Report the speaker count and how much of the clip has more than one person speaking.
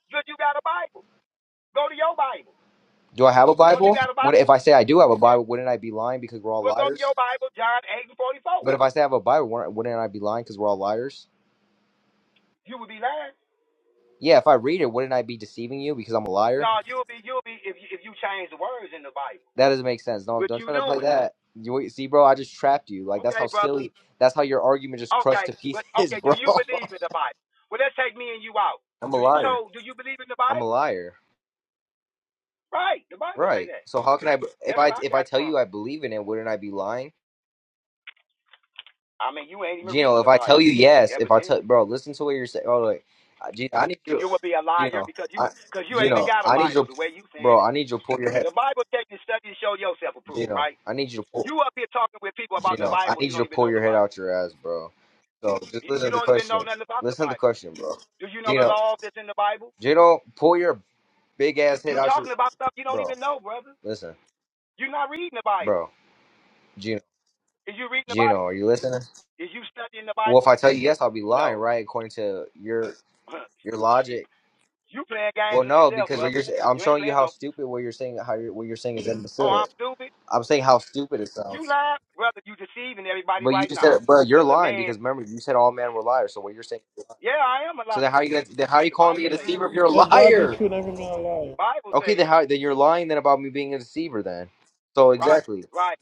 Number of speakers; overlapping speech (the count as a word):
three, about 20%